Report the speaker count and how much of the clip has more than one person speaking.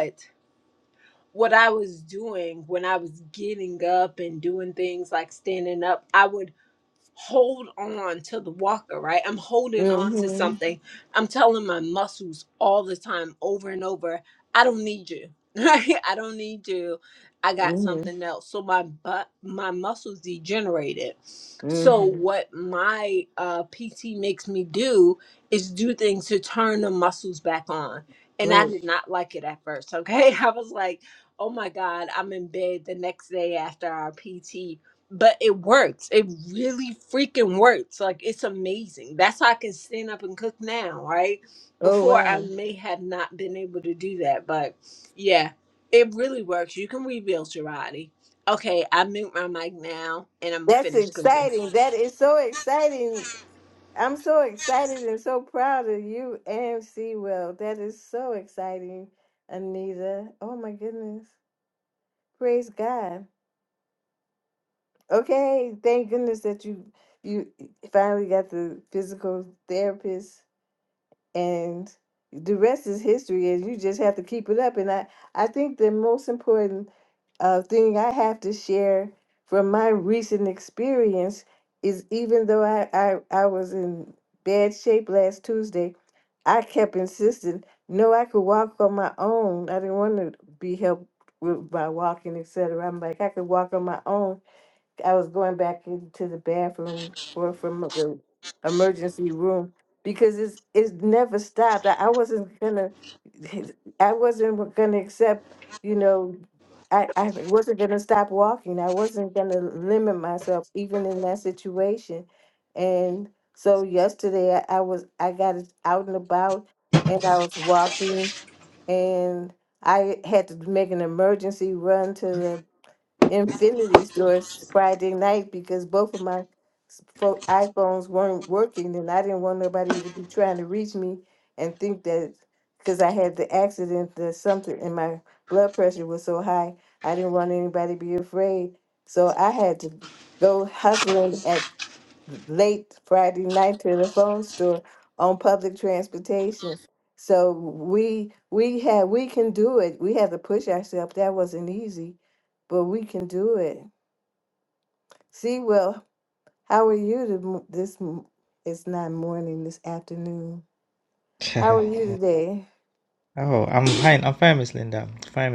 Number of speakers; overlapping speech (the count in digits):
3, about 2%